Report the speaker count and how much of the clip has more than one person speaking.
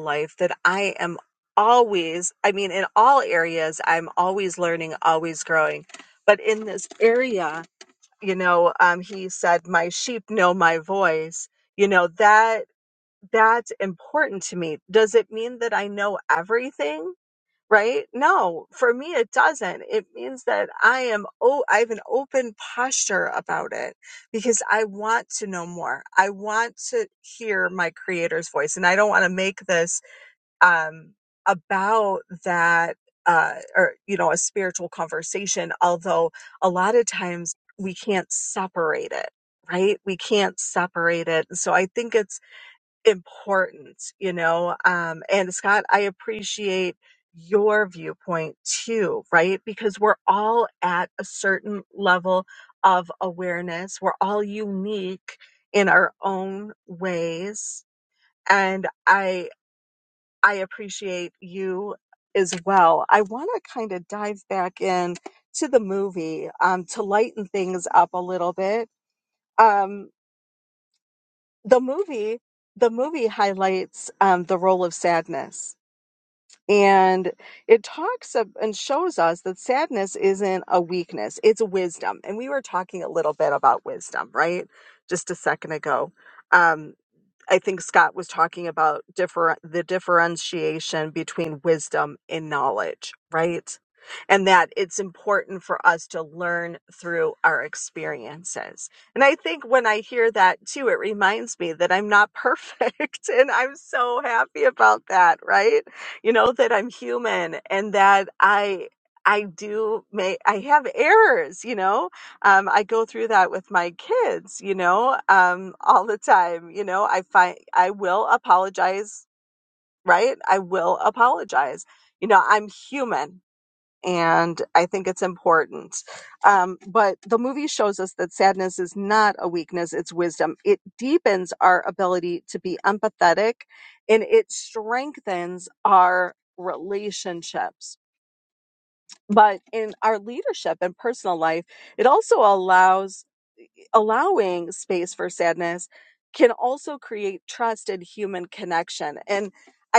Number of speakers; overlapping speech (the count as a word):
one, no overlap